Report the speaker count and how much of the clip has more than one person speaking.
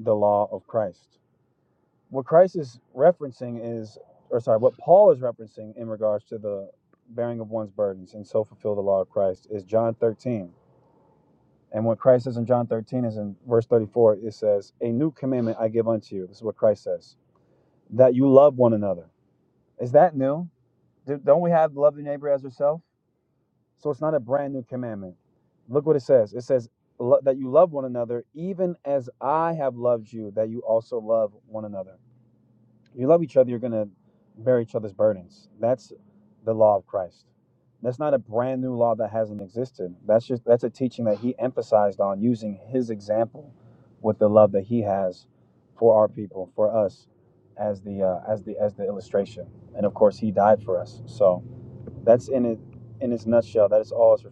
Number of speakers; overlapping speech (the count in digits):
1, no overlap